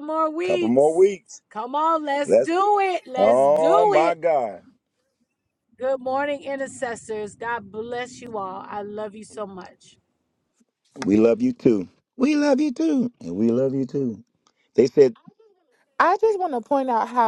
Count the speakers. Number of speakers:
3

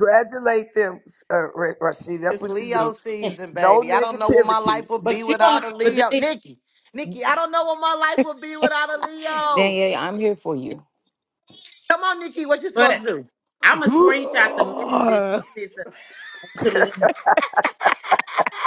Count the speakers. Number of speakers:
4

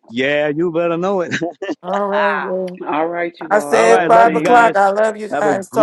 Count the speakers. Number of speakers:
3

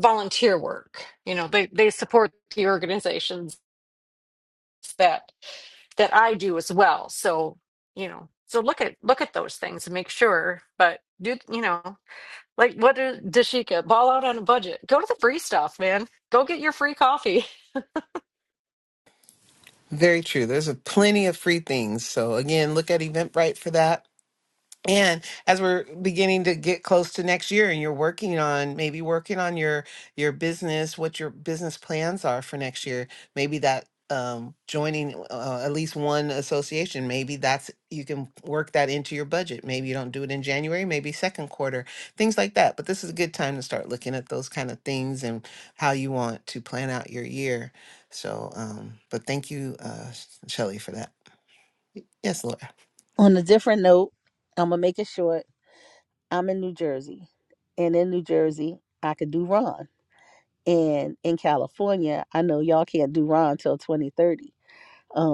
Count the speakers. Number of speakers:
3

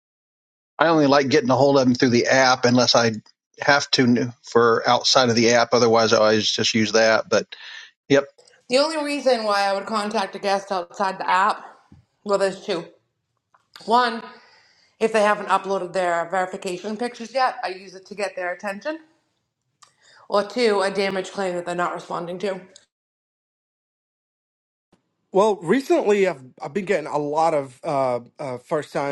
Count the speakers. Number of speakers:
3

